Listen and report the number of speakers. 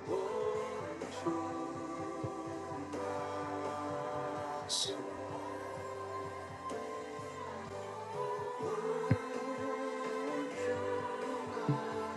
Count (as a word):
zero